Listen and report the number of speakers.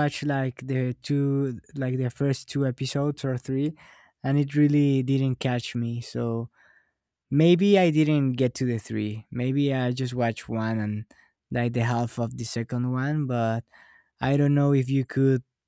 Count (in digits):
1